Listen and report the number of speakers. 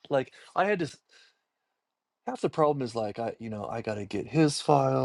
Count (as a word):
one